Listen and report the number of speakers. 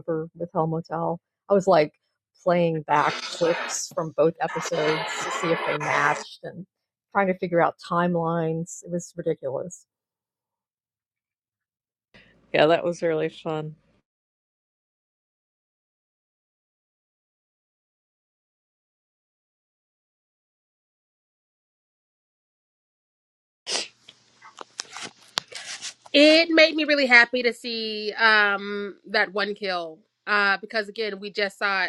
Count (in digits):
3